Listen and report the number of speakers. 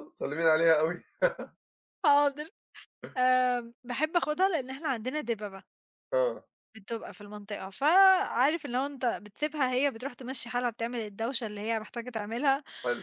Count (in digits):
2